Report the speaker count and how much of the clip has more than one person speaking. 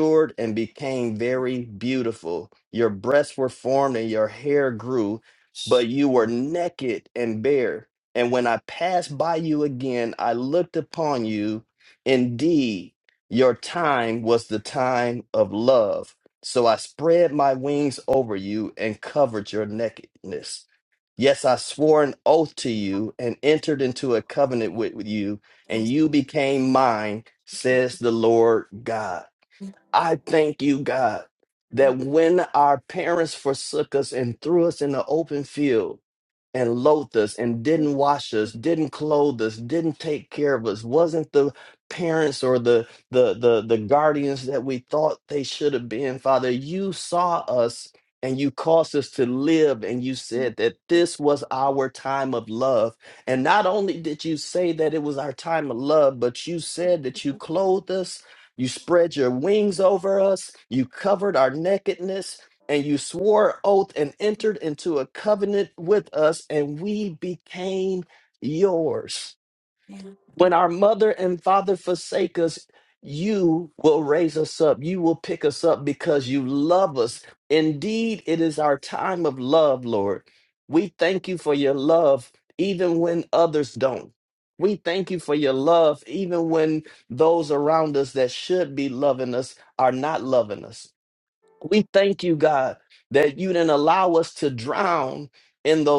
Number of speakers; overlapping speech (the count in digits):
1, no overlap